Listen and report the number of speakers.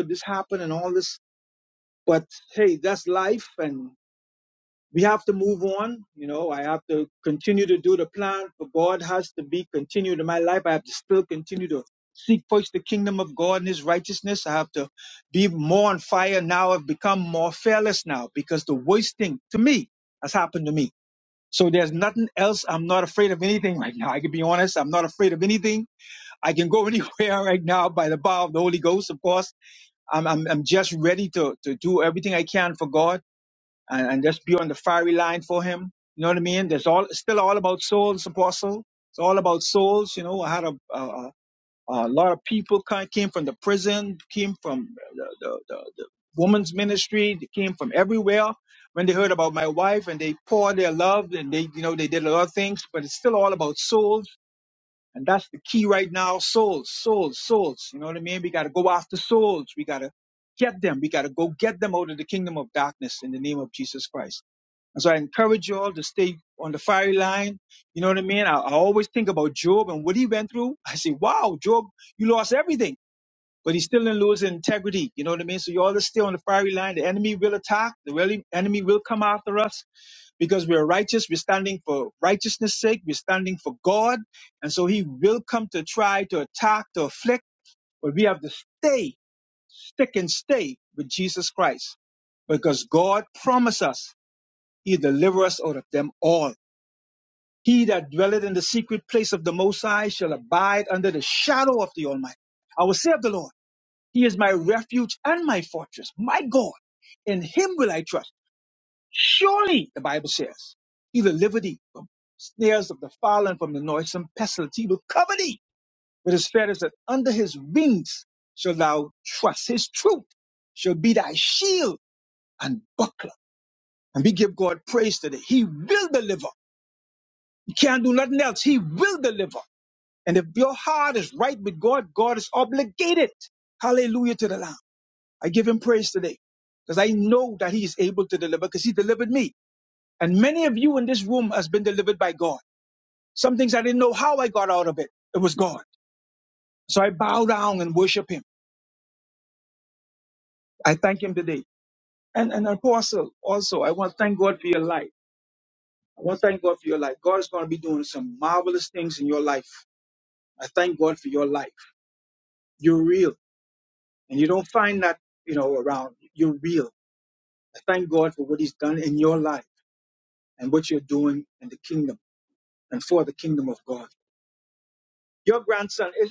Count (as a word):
one